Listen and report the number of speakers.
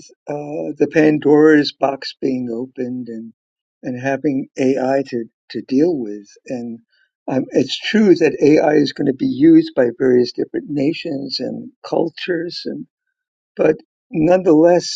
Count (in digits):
1